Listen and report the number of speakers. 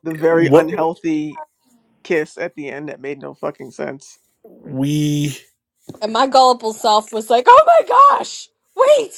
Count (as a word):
three